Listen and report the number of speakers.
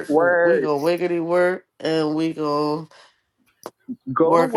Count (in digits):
2